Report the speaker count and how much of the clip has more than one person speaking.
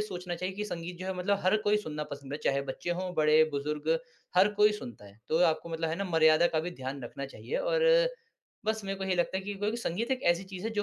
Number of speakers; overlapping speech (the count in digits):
1, no overlap